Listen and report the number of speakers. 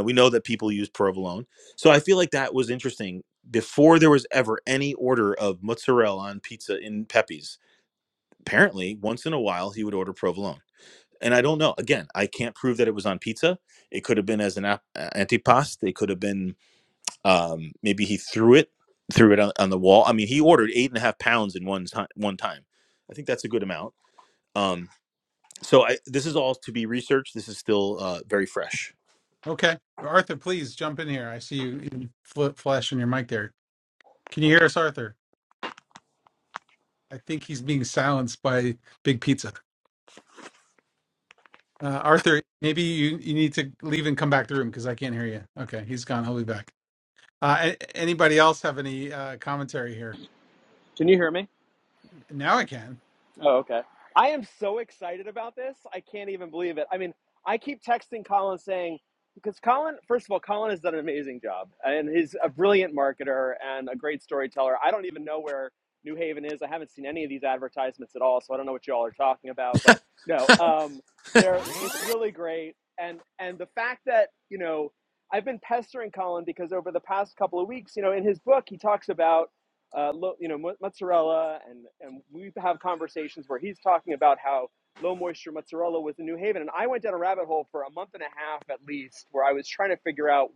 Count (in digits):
3